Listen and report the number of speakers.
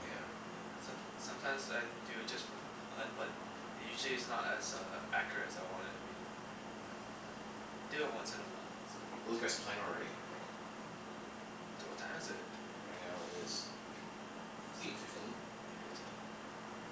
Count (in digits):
2